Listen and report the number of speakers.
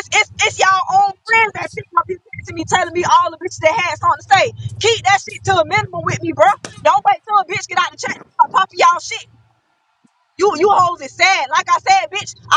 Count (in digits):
1